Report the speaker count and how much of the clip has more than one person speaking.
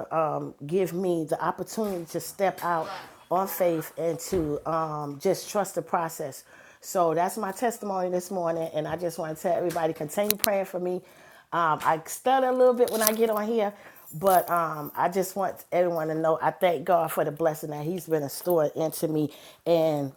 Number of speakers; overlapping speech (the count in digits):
1, no overlap